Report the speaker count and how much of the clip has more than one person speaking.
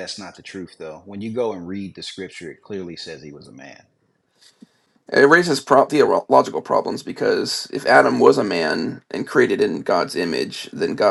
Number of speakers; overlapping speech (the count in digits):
2, no overlap